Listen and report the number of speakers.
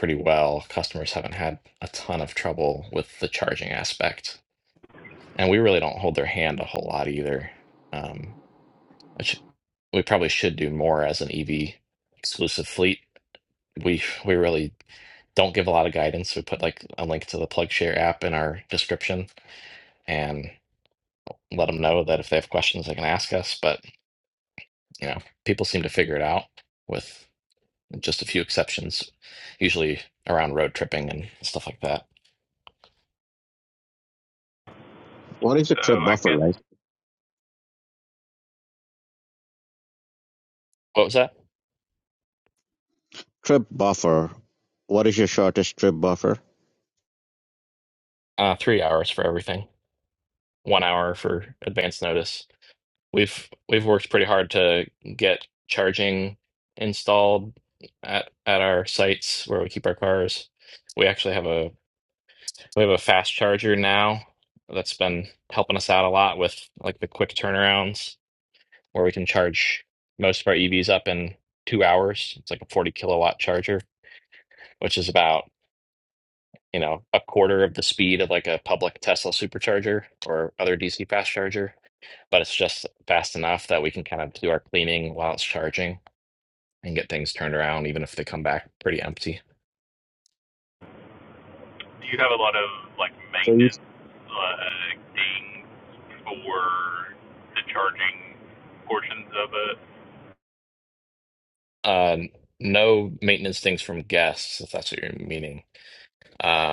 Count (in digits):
3